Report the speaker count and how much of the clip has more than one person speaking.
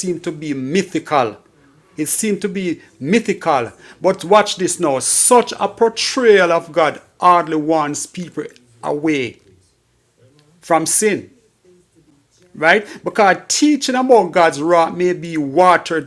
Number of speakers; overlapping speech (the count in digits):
1, no overlap